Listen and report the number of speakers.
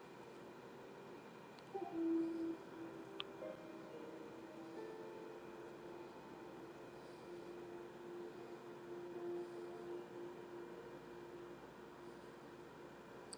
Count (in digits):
0